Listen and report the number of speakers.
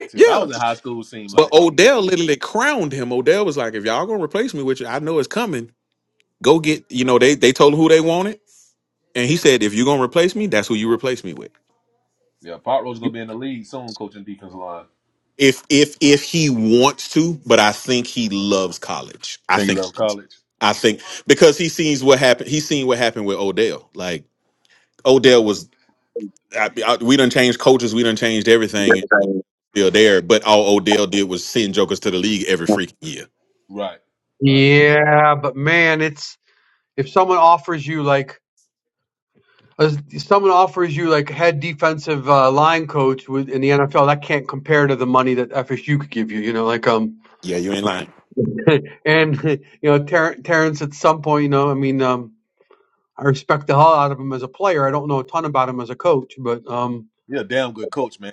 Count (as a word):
three